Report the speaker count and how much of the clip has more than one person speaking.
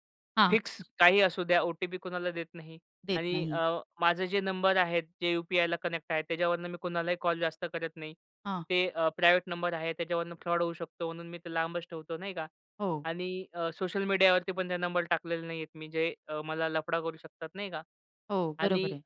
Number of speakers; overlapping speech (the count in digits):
2, about 5%